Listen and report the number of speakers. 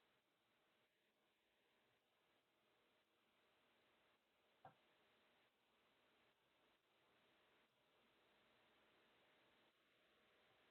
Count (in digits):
0